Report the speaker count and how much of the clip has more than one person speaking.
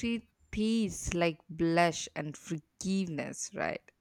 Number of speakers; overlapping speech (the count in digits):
1, no overlap